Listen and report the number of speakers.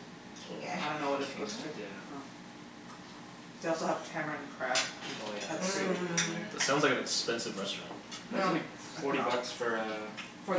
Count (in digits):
4